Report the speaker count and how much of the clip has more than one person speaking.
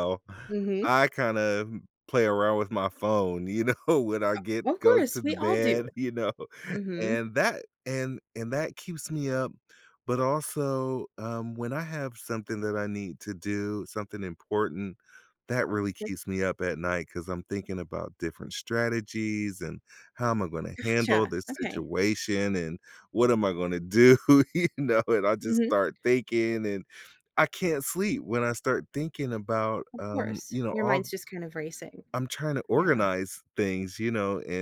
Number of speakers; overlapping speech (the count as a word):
two, about 12%